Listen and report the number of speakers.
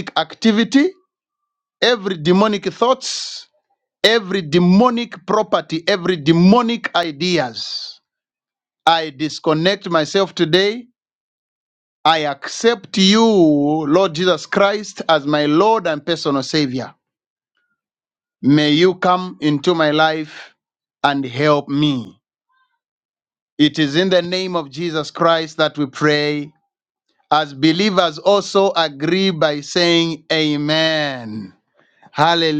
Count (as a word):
one